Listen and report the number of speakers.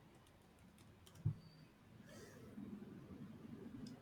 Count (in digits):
0